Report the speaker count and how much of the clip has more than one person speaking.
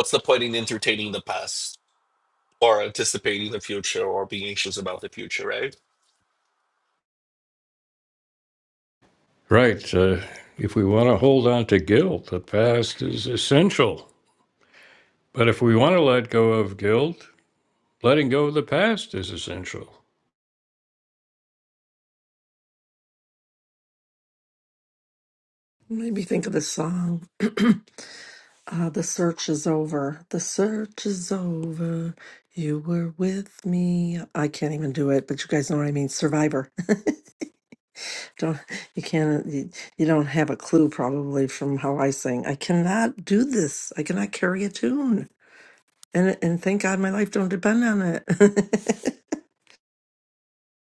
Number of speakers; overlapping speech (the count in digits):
3, no overlap